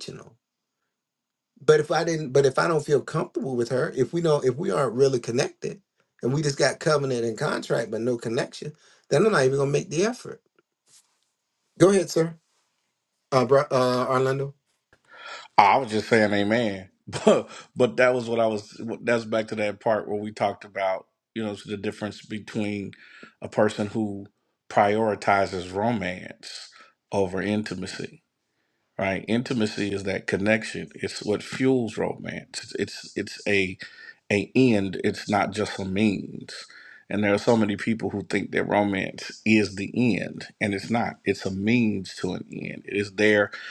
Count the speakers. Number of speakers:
two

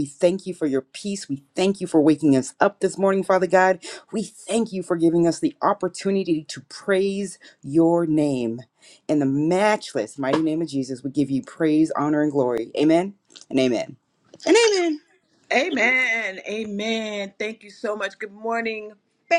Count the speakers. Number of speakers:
two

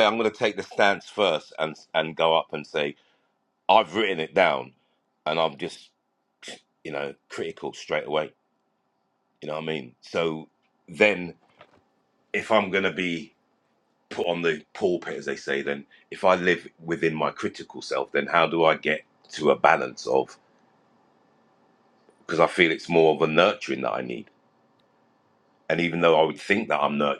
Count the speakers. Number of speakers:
one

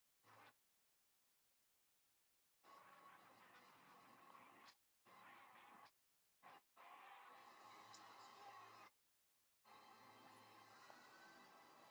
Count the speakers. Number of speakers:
zero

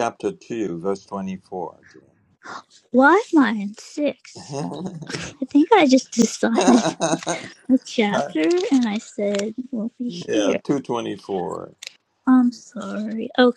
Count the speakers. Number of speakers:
two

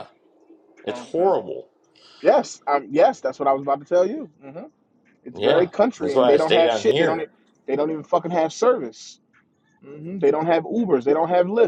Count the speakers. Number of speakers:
two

